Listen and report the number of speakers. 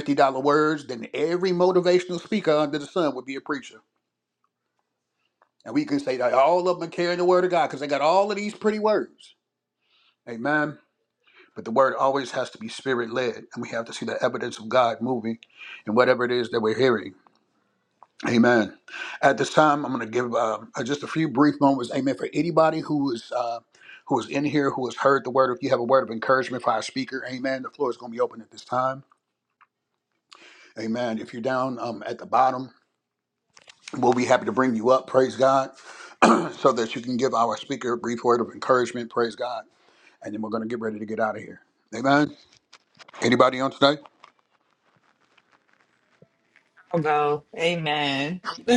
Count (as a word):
two